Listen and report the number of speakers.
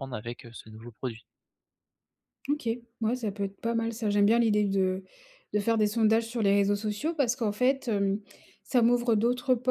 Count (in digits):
2